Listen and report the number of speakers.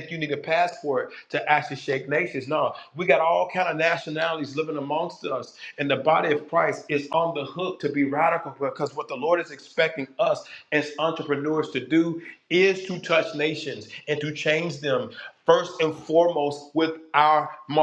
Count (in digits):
1